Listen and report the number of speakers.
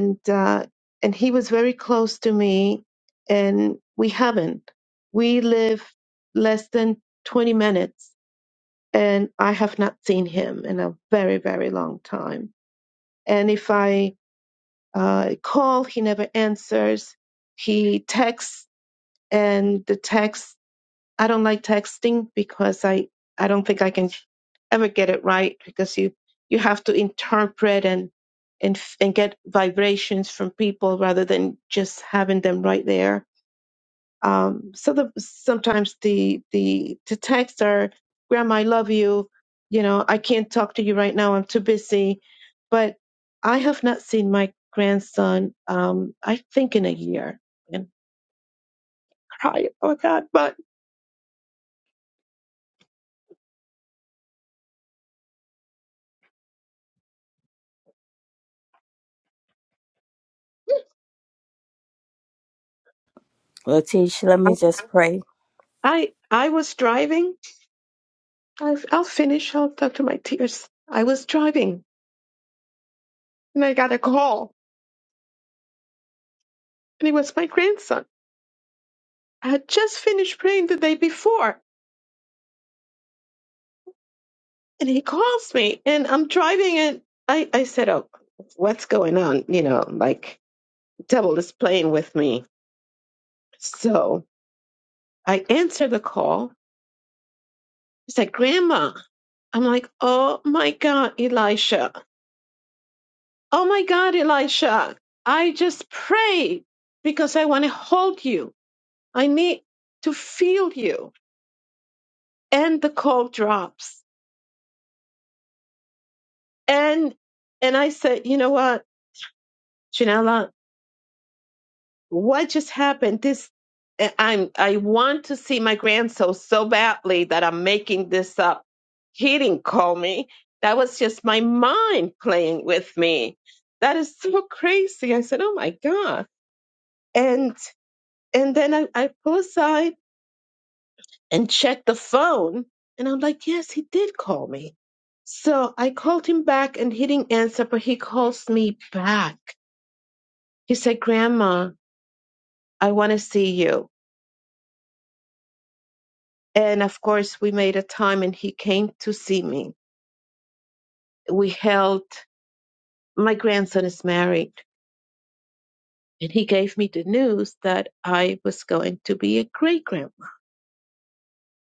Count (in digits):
2